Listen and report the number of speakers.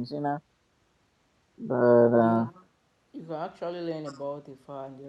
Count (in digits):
2